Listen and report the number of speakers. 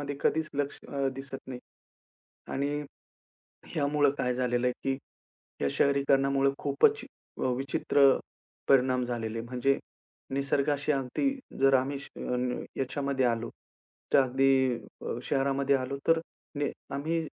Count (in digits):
1